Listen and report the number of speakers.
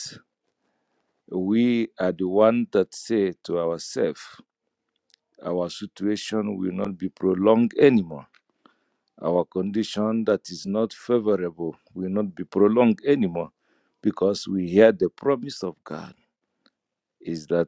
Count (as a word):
one